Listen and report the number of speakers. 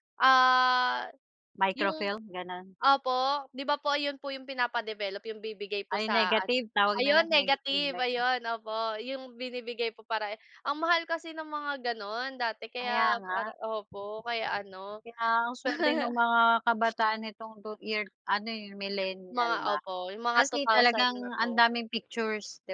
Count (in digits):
2